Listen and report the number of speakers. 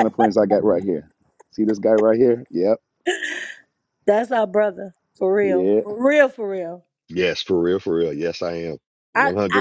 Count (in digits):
3